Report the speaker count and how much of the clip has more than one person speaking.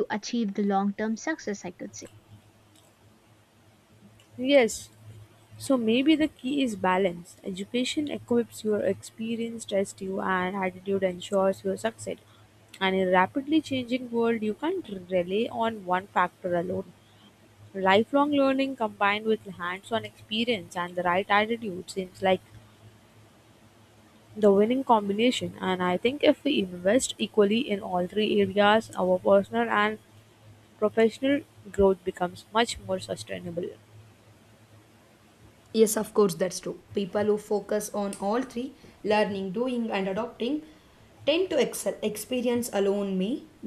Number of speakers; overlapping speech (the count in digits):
3, no overlap